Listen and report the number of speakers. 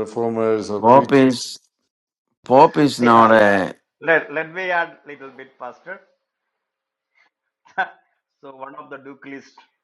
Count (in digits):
3